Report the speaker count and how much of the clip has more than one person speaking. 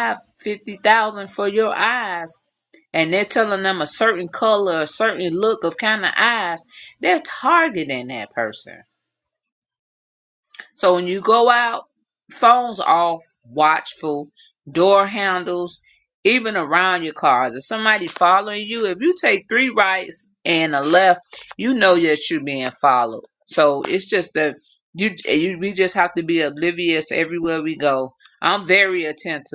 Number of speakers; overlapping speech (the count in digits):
1, no overlap